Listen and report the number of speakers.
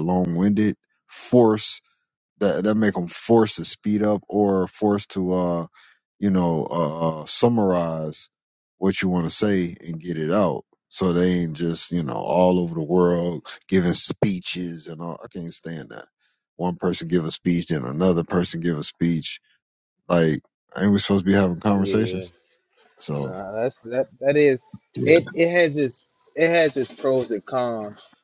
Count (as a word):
two